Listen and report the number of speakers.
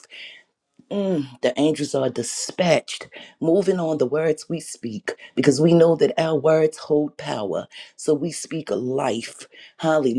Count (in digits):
1